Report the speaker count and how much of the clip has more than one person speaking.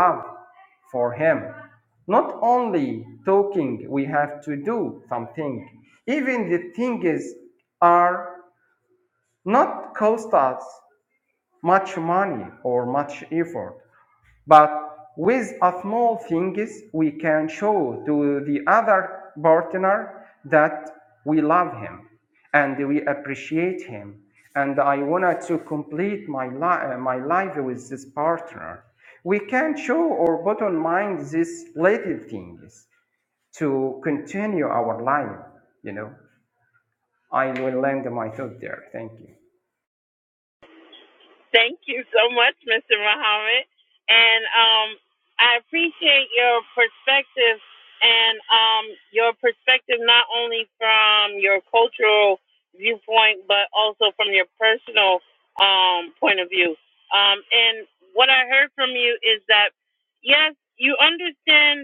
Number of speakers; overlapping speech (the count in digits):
2, no overlap